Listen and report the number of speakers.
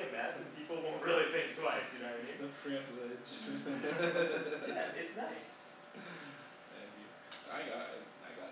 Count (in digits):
2